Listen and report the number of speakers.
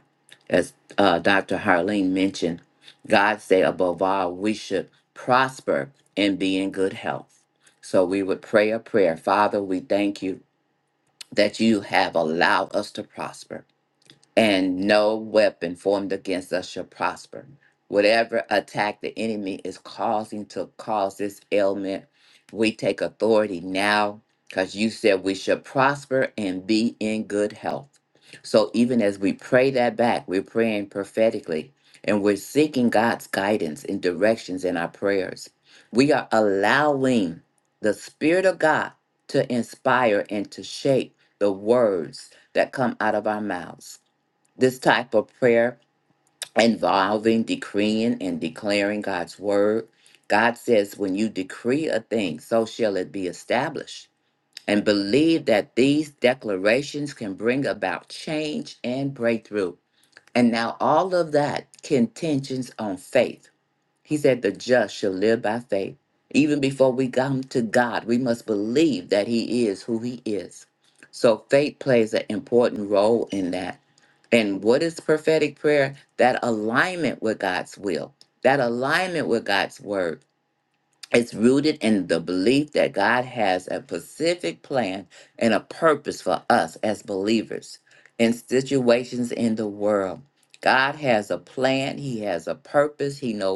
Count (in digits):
1